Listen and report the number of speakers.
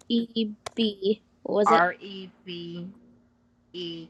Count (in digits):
2